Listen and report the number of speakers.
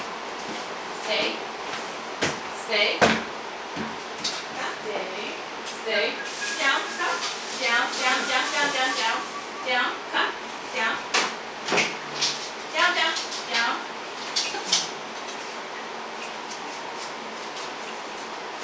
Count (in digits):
2